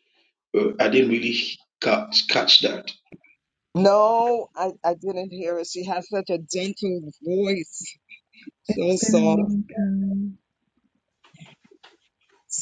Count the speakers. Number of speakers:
three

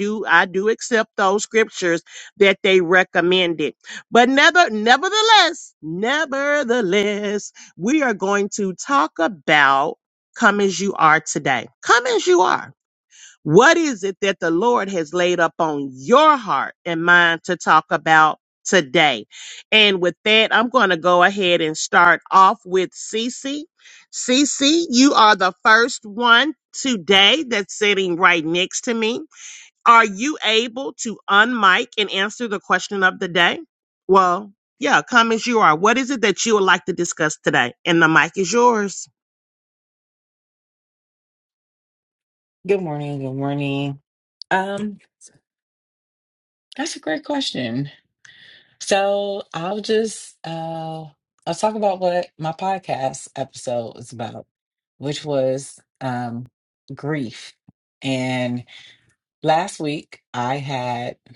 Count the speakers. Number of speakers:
two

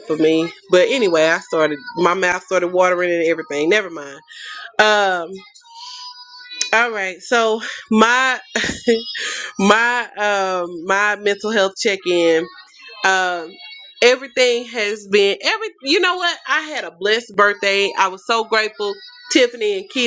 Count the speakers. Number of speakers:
one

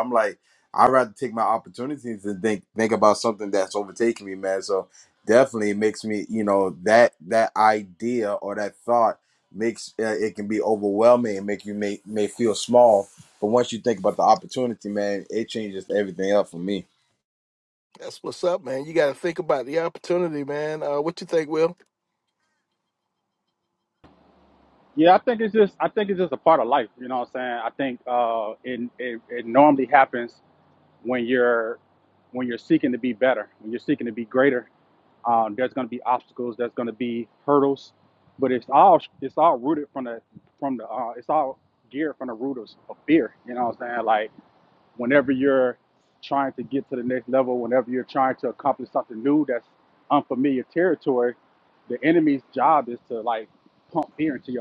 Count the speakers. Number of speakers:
three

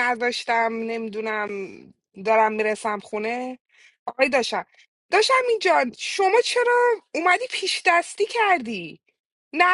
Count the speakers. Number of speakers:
one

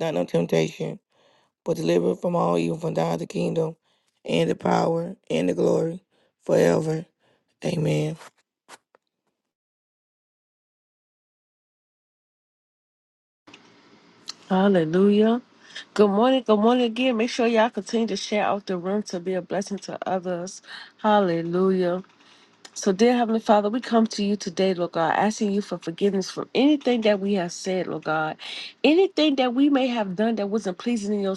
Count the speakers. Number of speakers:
two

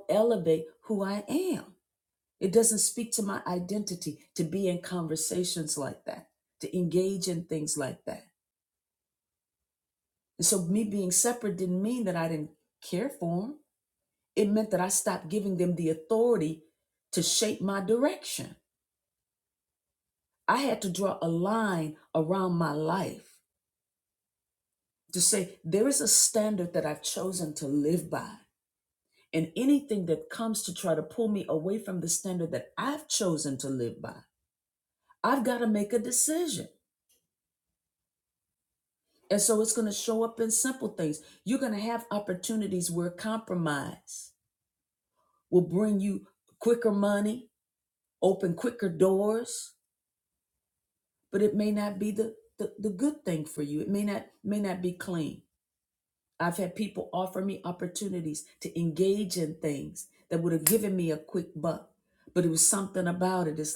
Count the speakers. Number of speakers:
one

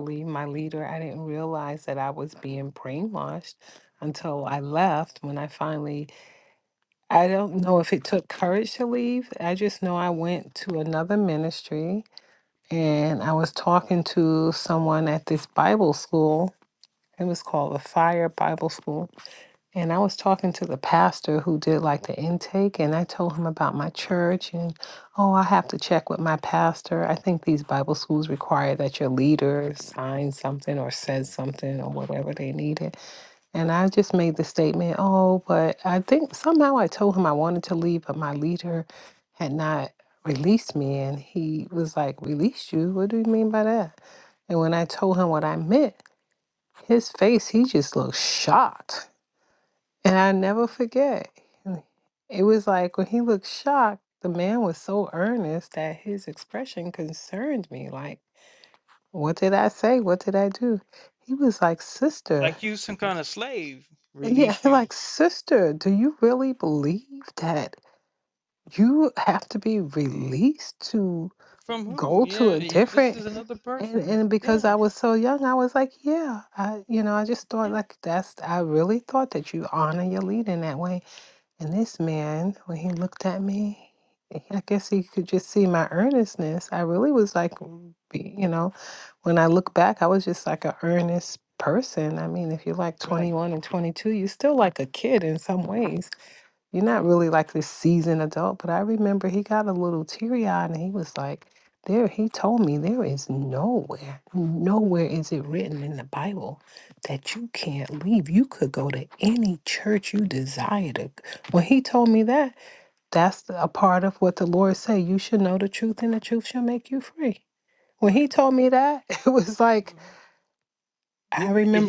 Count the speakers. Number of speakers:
two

